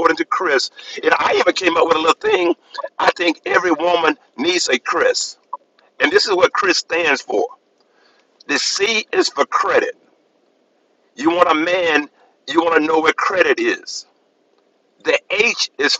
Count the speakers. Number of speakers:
1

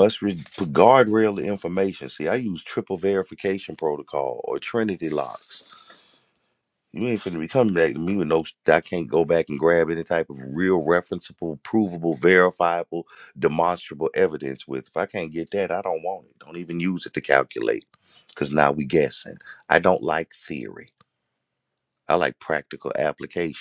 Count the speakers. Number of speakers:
1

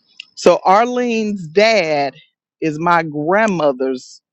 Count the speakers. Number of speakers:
1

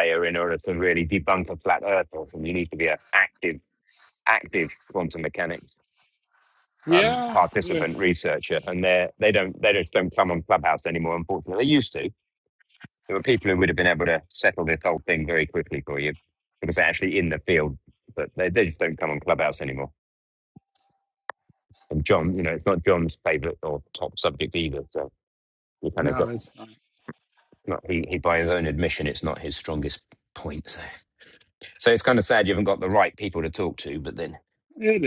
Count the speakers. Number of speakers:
2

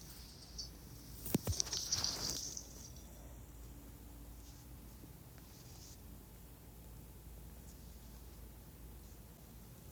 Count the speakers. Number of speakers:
0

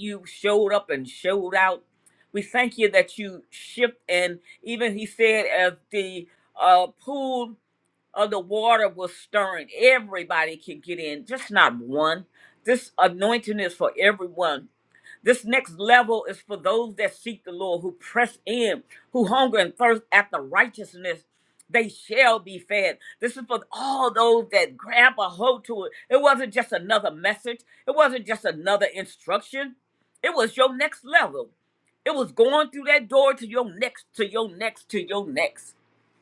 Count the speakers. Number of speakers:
1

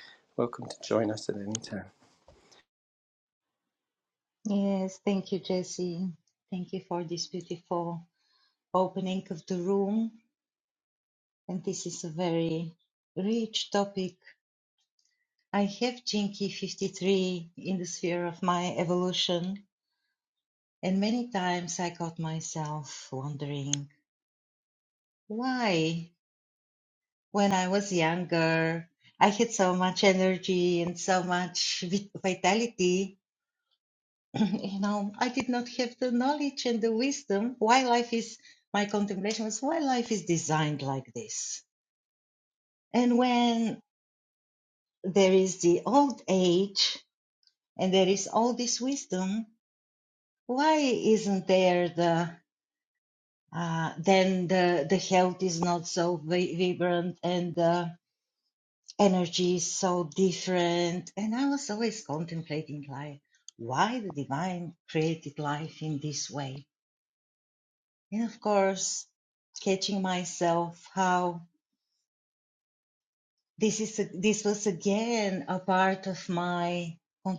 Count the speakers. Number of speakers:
2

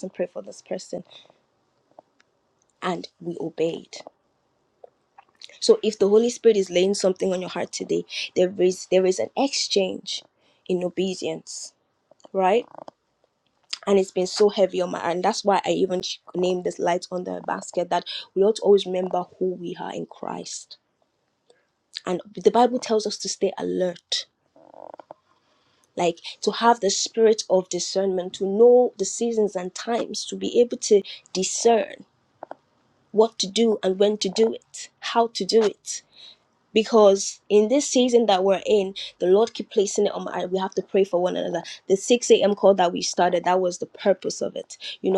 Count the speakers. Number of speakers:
1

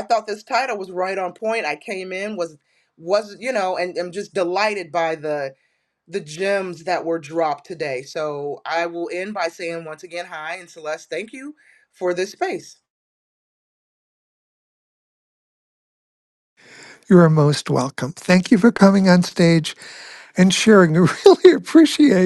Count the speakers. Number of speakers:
2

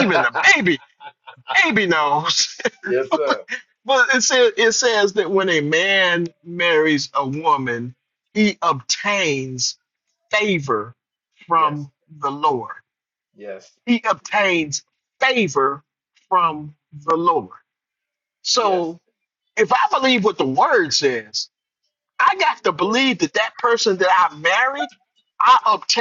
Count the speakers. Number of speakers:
2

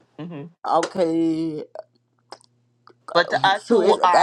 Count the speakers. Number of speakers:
2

